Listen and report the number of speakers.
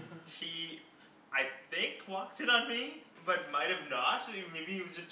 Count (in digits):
1